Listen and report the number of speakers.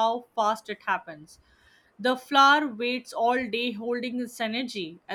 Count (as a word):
one